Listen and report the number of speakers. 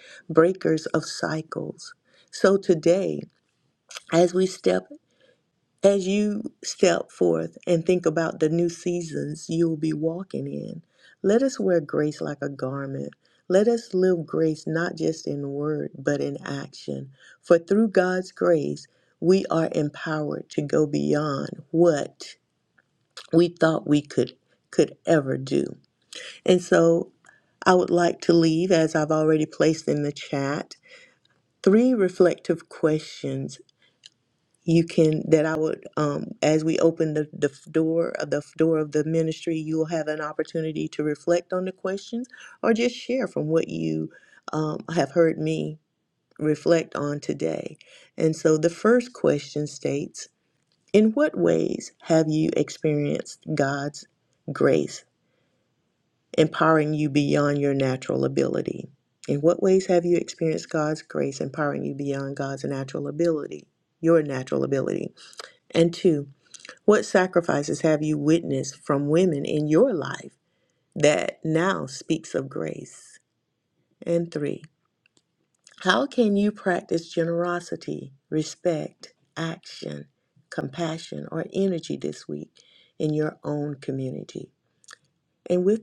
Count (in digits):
1